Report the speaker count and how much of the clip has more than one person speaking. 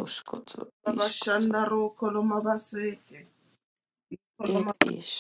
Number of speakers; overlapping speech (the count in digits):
2, about 21%